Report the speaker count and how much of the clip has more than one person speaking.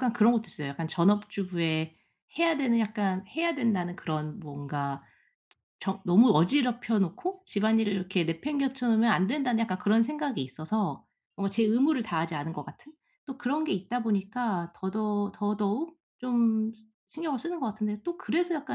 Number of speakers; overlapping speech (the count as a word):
one, no overlap